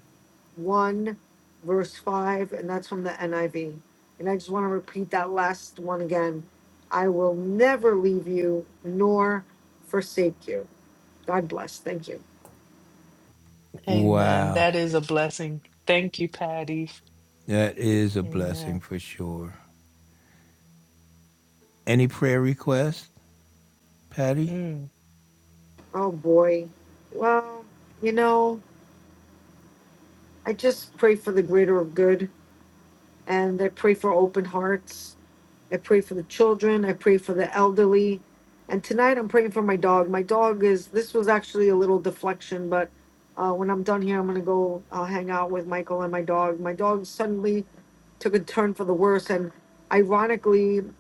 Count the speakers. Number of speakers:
three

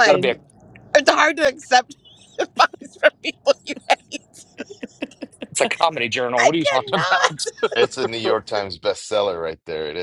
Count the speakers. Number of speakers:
three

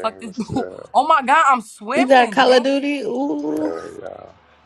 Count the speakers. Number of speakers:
three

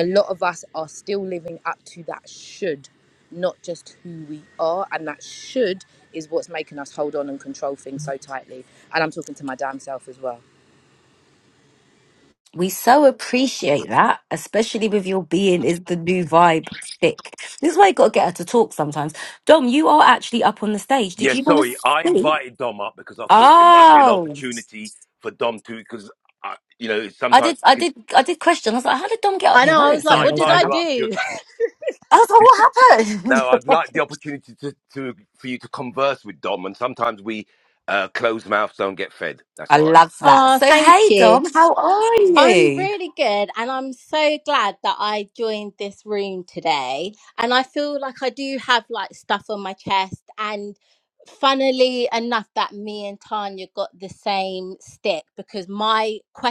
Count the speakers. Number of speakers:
four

